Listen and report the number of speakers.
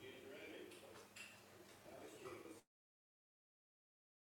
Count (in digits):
0